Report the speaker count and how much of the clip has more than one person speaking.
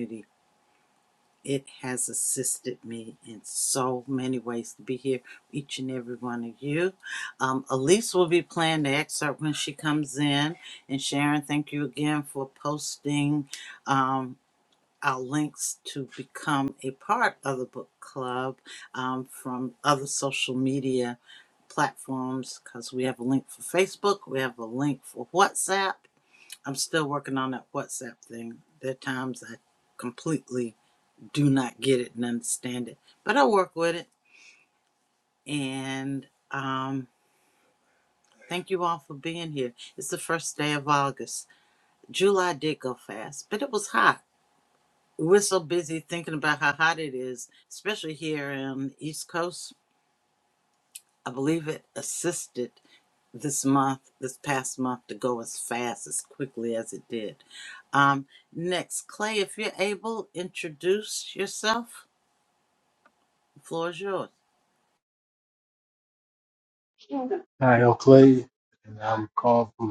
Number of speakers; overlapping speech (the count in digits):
2, no overlap